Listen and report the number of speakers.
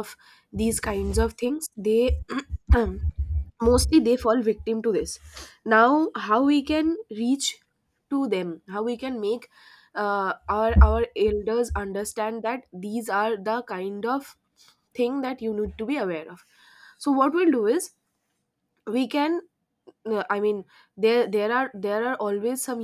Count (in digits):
1